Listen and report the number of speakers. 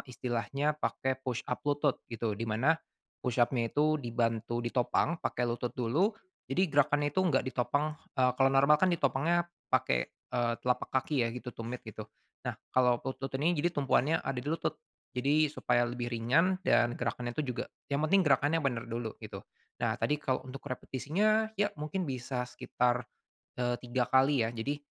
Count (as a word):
one